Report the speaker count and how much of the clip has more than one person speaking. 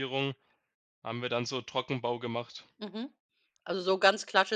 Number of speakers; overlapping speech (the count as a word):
two, no overlap